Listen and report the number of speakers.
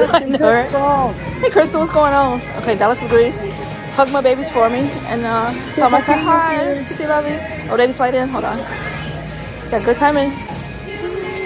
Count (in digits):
2